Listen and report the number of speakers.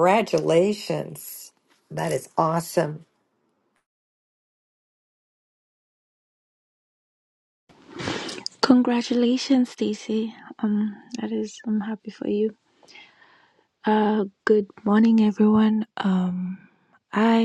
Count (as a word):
two